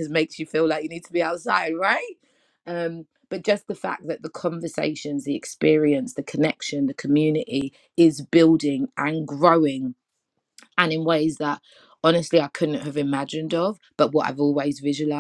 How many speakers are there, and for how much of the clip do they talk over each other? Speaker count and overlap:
one, no overlap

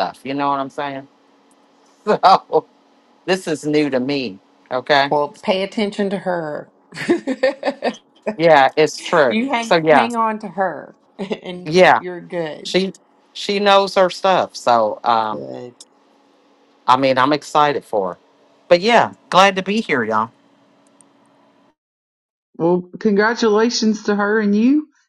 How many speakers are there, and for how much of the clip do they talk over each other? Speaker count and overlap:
three, about 3%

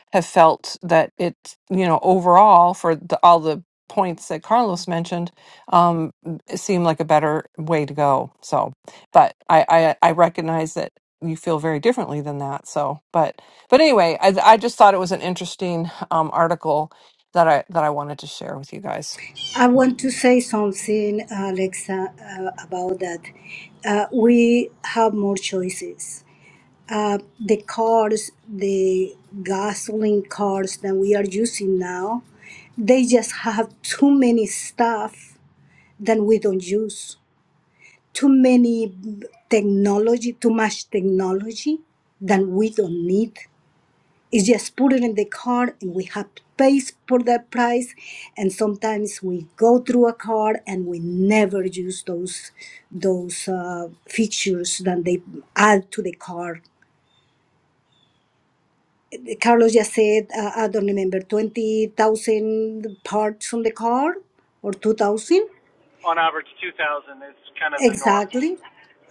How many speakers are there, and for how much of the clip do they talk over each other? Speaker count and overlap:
three, about 1%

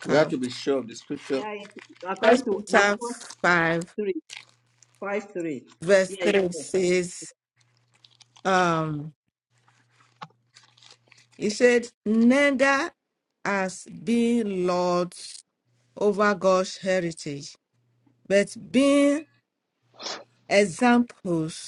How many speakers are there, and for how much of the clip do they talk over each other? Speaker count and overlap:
three, about 9%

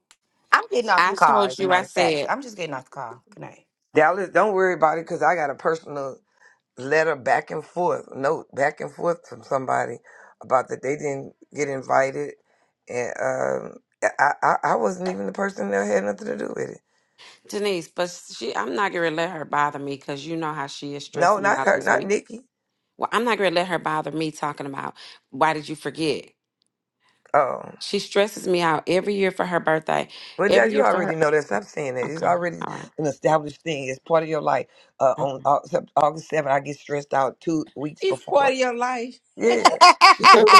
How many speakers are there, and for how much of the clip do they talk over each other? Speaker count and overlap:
four, about 10%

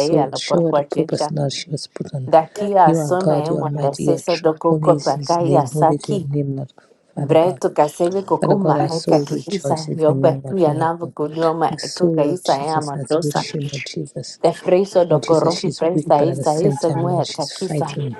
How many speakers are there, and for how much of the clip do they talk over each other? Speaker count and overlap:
two, about 67%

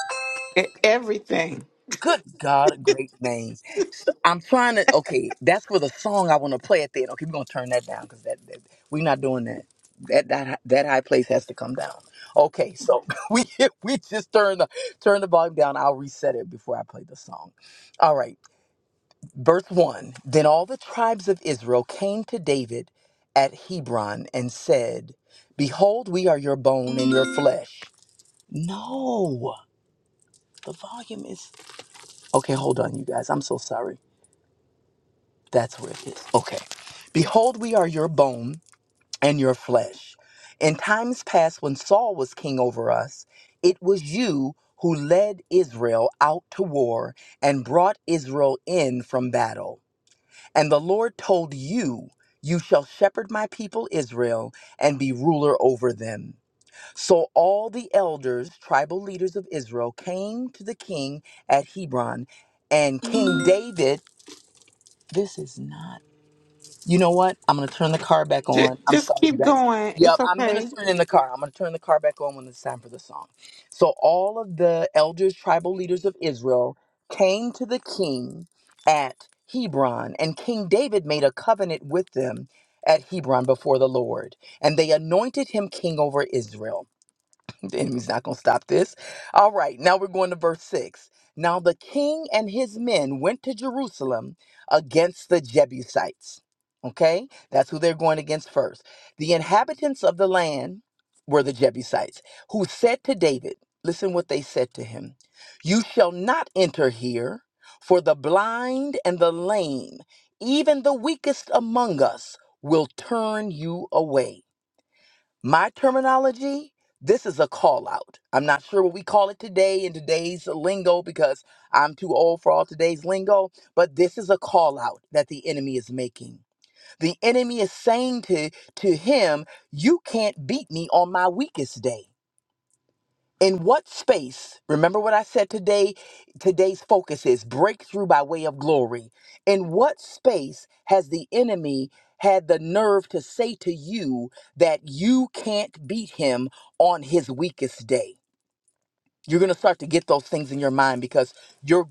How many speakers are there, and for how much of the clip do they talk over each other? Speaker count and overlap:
two, about 1%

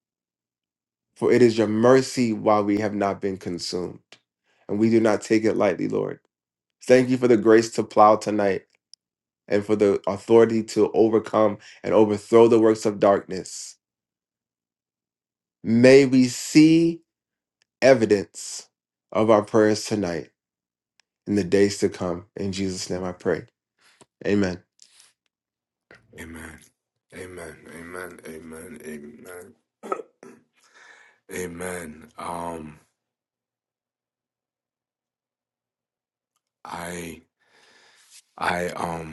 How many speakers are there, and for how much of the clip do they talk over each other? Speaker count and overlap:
two, no overlap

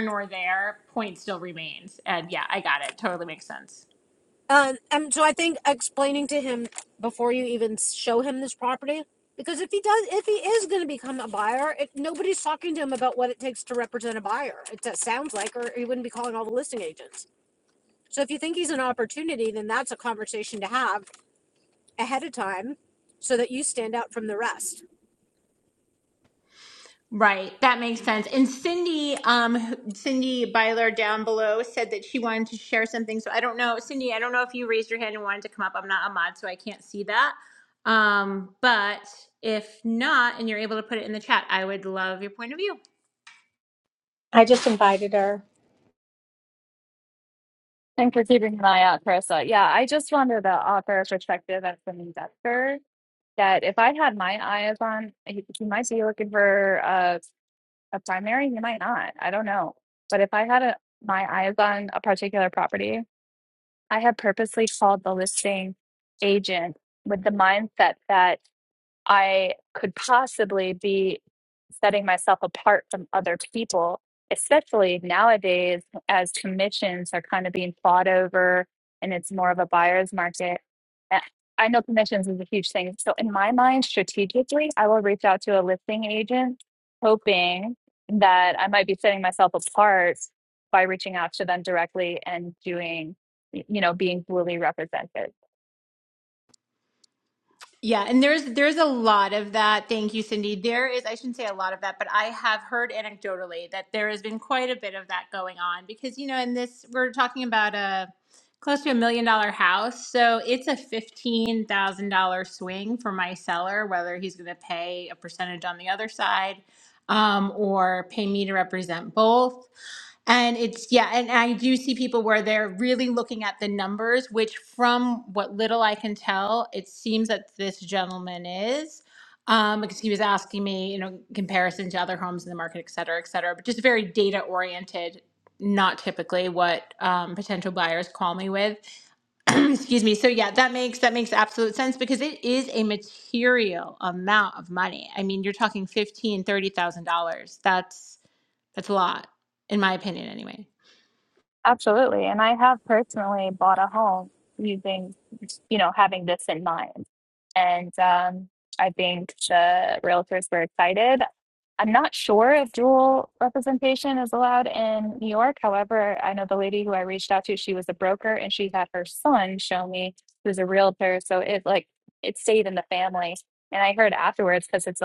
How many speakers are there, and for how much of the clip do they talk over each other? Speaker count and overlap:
four, no overlap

